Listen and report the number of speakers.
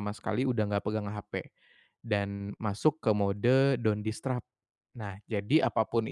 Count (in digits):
1